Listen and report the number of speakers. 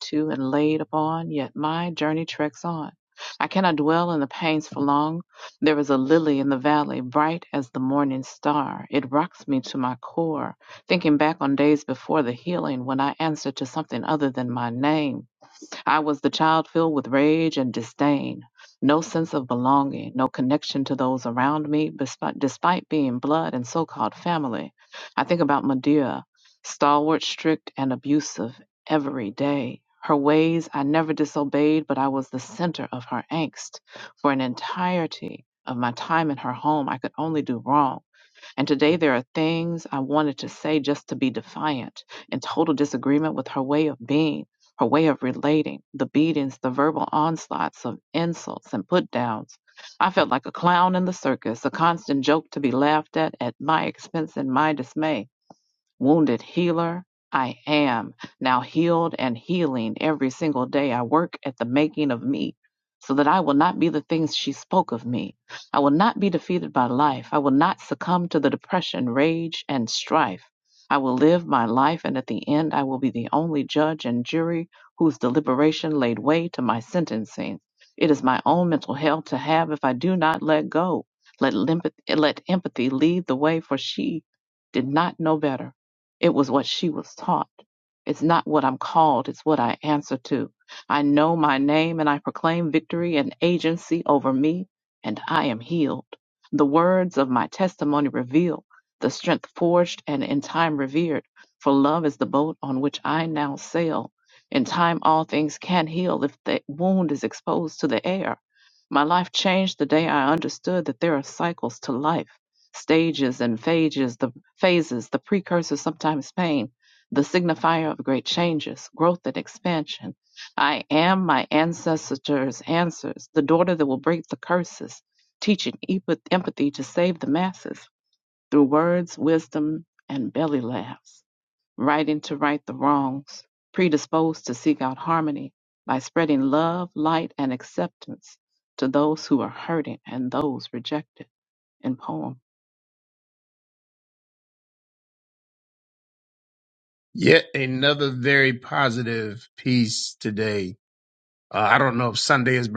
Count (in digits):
2